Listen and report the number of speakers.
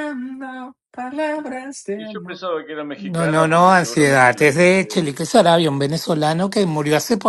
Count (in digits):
3